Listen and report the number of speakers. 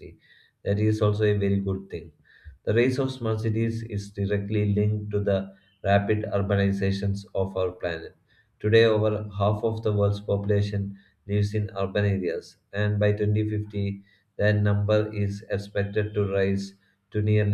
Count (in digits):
1